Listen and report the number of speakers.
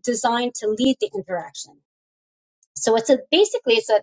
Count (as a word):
one